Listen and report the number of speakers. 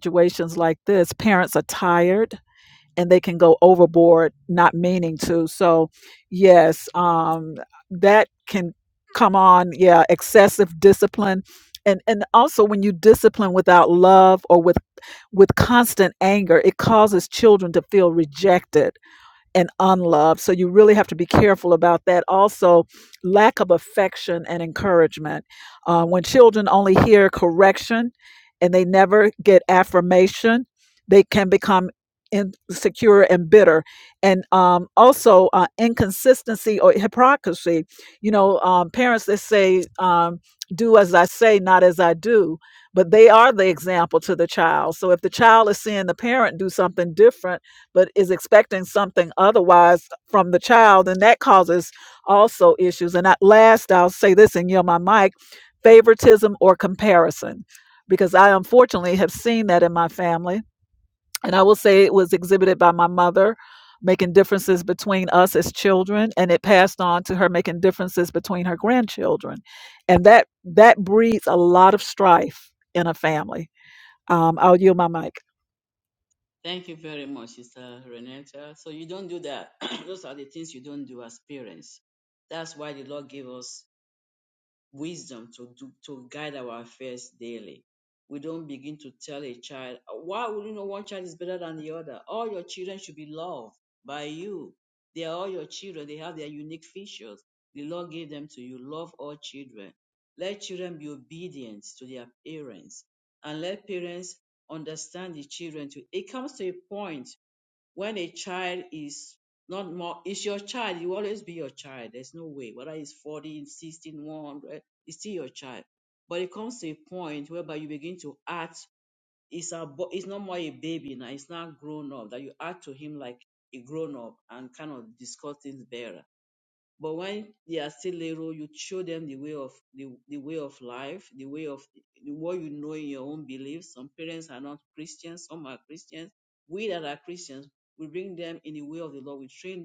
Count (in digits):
2